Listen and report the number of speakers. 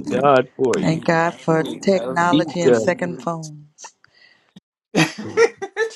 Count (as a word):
three